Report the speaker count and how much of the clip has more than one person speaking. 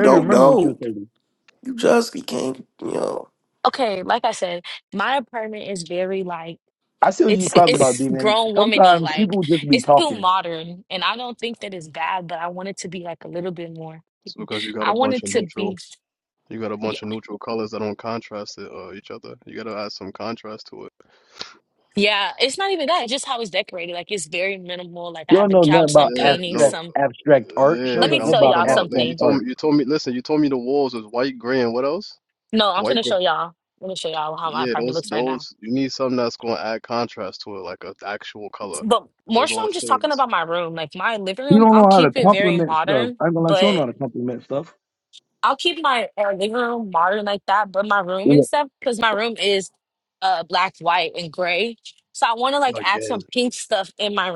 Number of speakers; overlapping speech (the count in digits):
4, about 24%